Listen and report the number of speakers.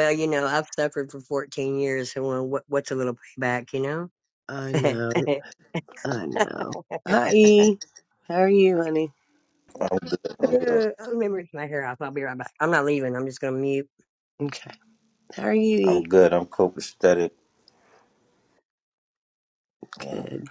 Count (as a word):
three